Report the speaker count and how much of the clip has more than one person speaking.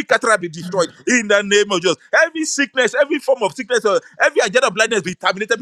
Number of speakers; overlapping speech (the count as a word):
one, no overlap